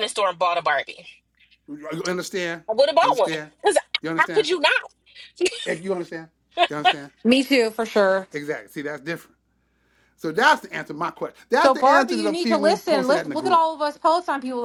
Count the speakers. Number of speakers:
3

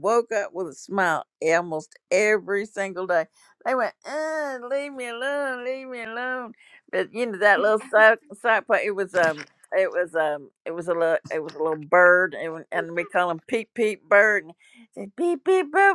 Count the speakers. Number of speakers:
1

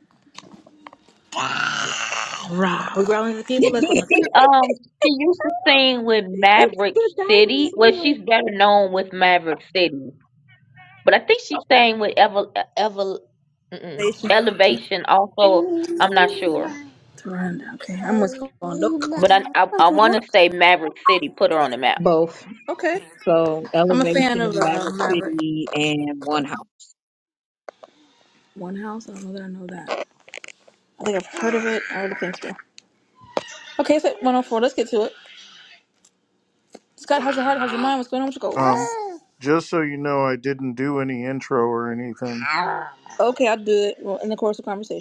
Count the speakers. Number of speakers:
4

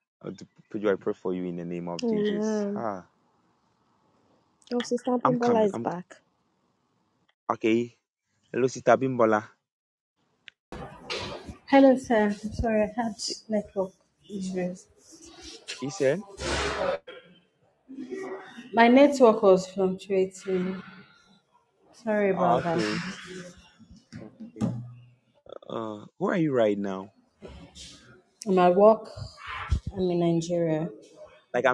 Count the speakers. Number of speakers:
3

